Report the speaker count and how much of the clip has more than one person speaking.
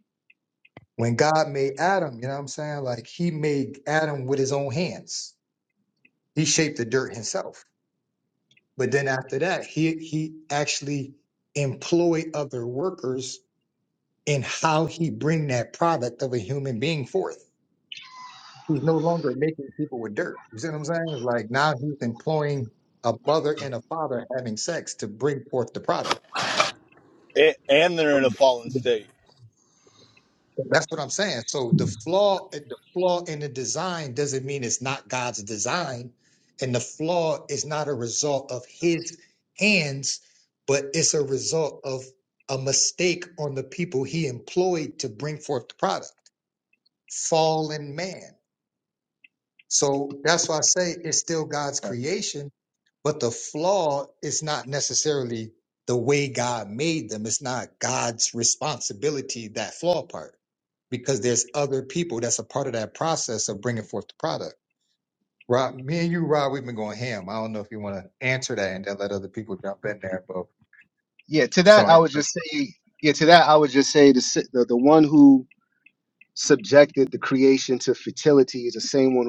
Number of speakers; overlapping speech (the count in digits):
3, about 1%